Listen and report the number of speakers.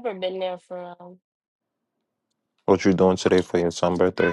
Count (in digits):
2